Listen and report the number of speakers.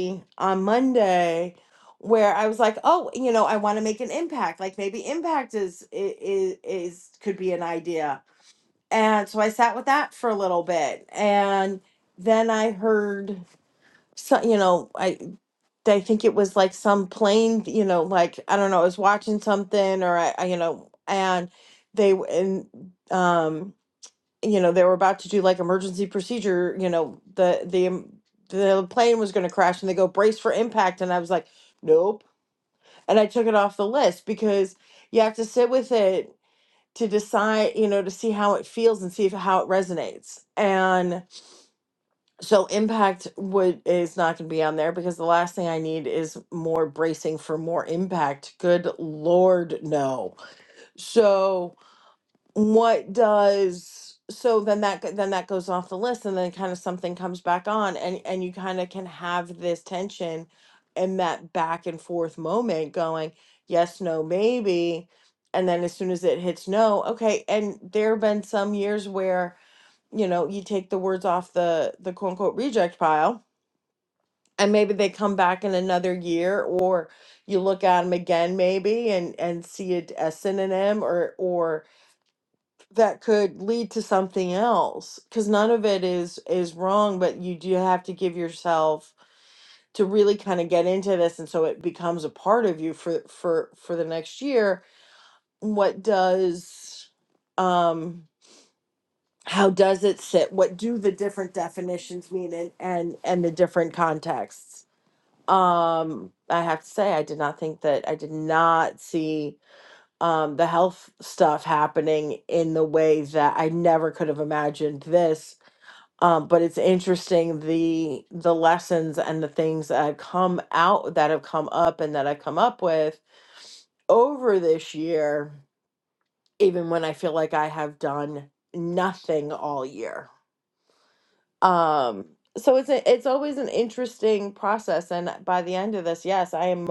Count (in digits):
1